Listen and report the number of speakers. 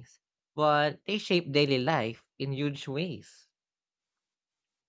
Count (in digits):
1